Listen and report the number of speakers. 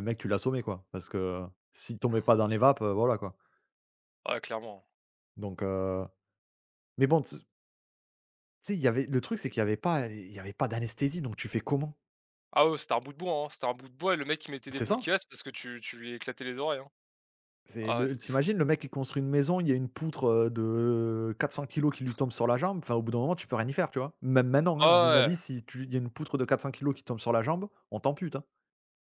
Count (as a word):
two